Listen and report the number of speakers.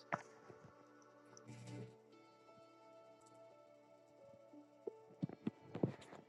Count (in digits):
0